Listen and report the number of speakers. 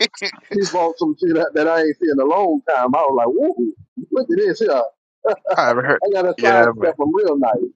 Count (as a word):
two